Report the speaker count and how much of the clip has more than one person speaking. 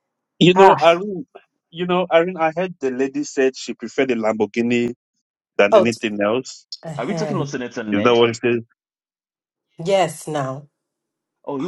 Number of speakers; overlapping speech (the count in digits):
3, about 11%